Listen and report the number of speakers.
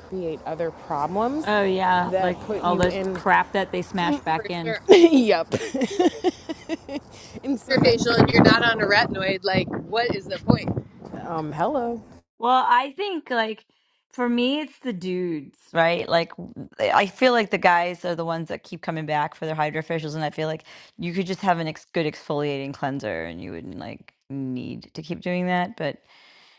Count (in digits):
3